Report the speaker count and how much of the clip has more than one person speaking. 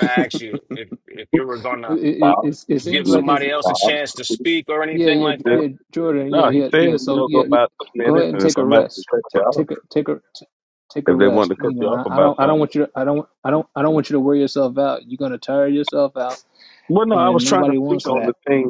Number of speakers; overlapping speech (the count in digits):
3, about 41%